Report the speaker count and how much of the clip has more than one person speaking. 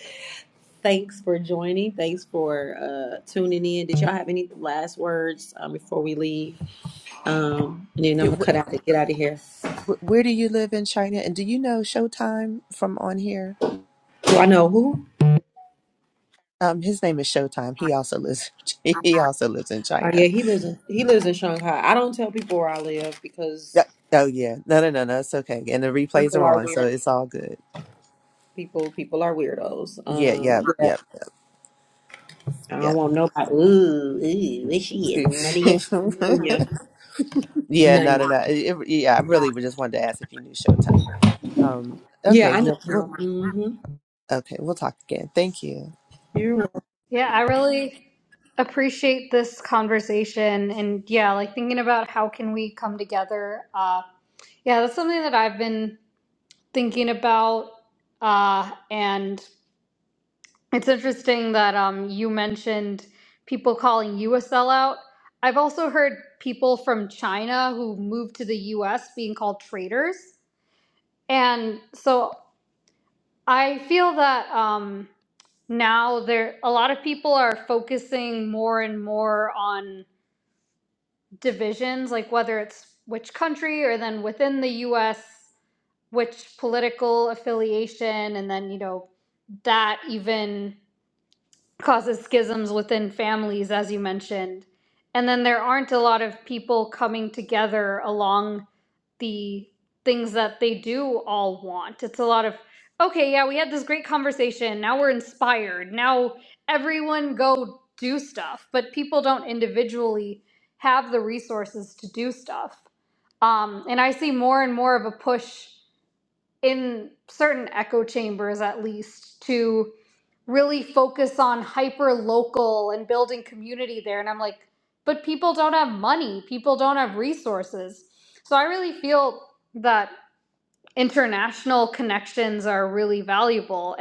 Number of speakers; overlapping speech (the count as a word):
three, about 3%